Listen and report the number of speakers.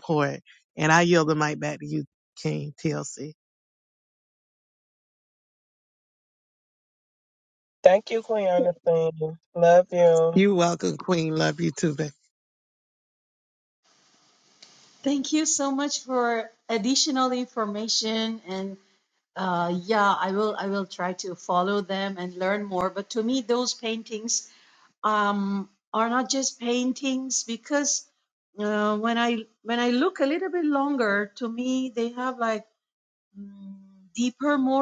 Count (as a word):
three